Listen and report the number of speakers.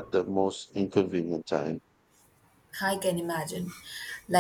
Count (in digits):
2